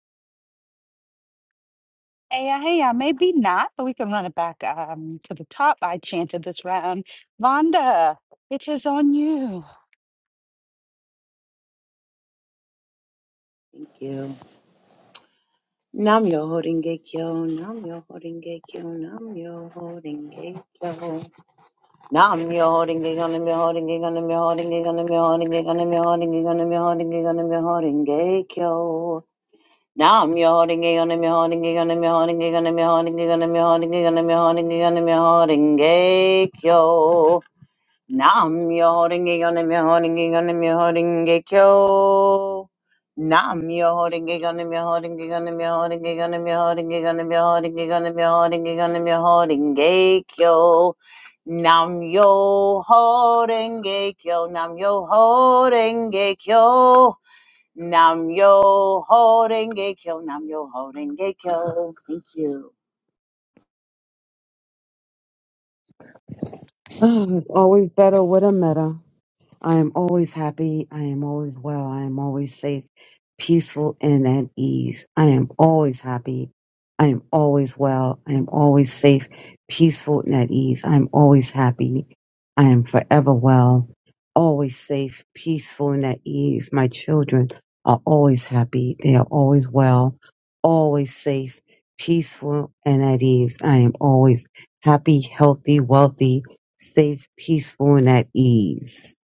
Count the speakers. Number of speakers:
three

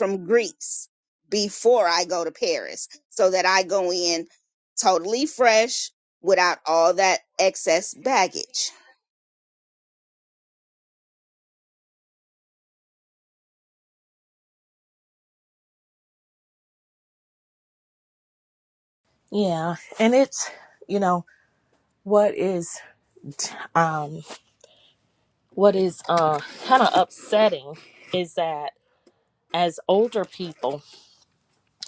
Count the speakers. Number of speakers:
two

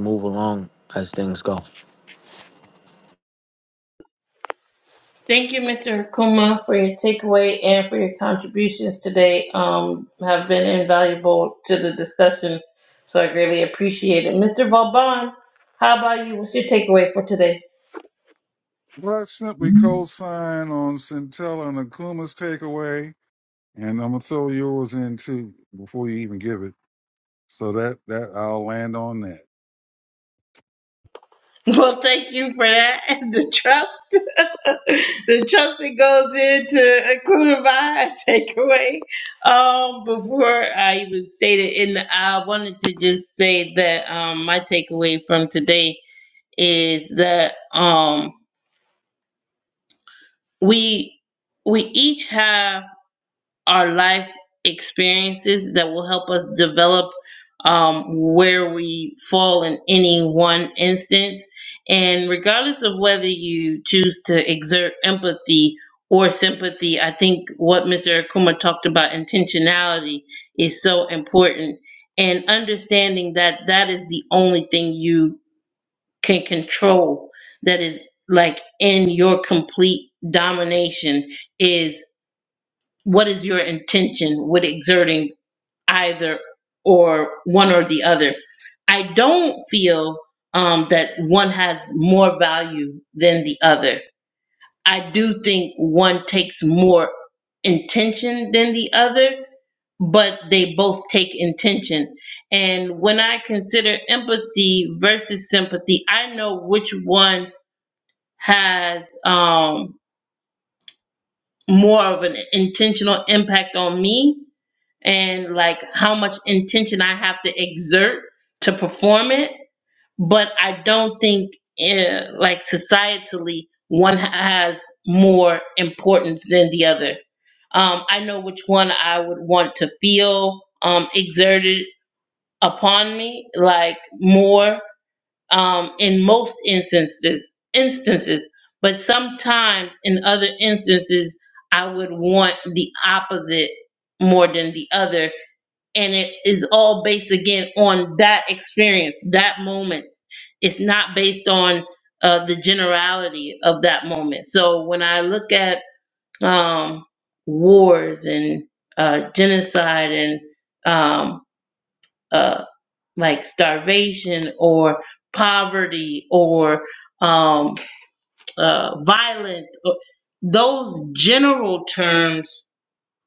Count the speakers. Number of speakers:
three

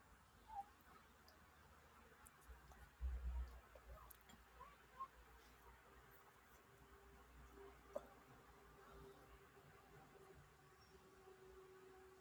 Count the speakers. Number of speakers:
zero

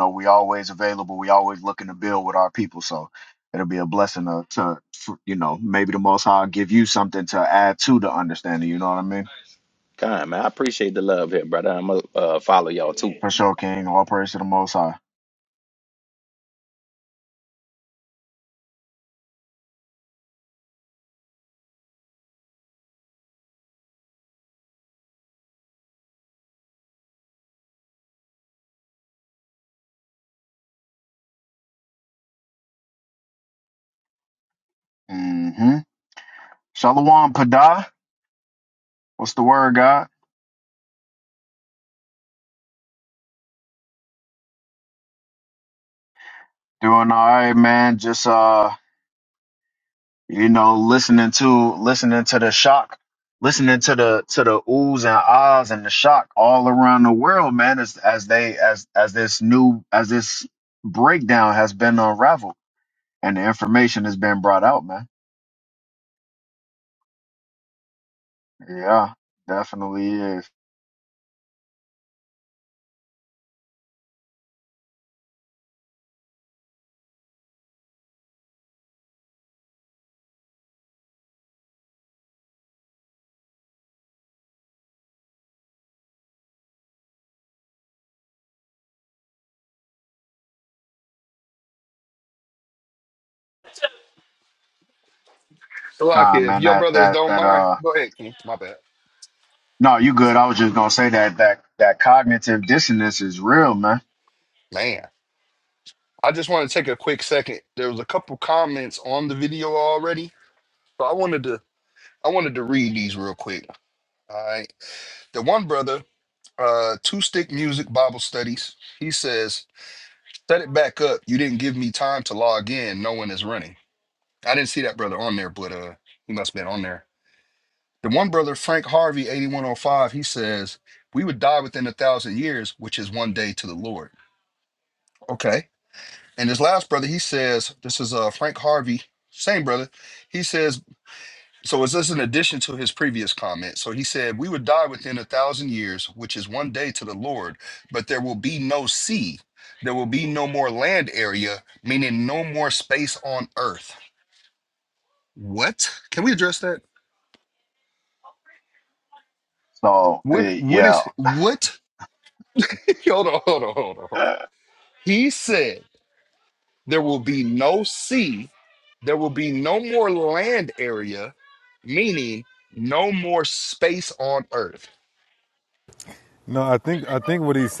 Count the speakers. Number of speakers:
four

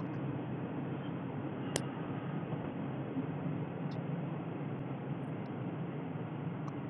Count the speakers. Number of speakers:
zero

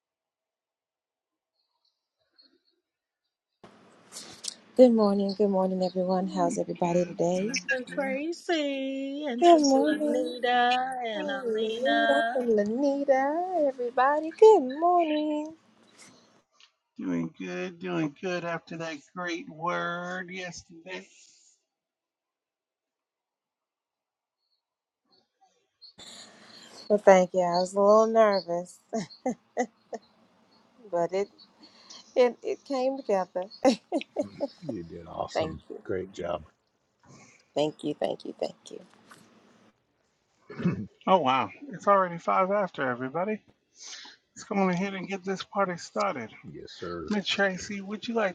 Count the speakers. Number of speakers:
four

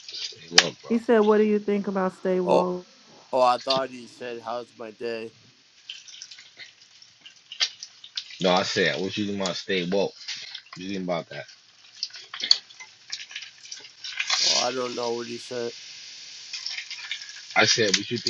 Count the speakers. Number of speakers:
three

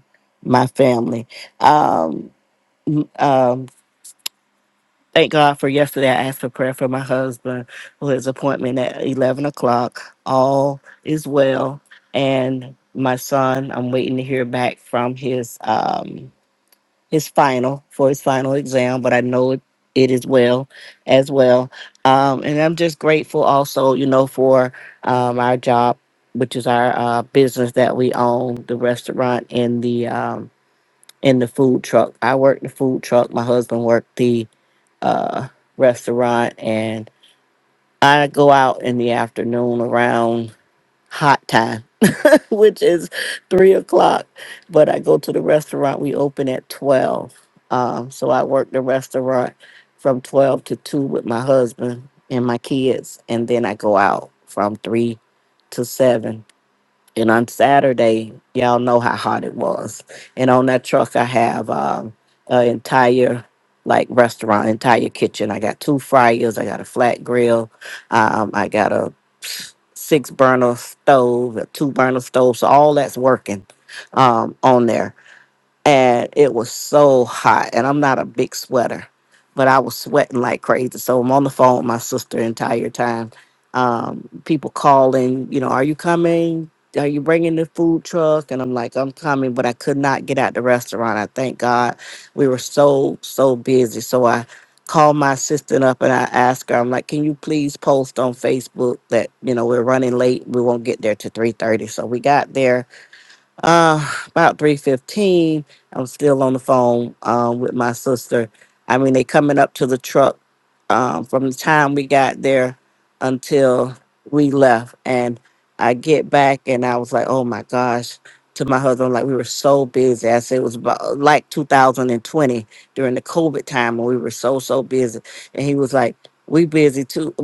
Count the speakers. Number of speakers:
one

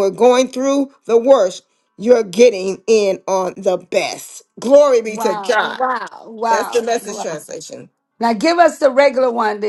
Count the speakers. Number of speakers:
two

